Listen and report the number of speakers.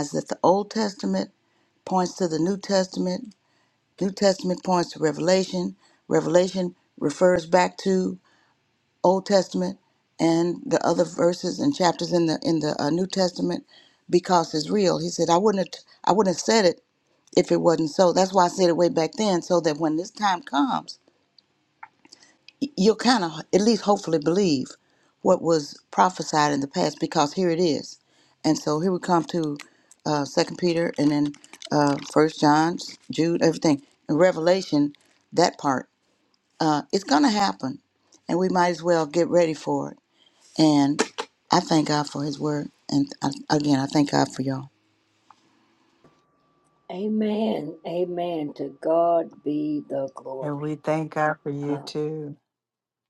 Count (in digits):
3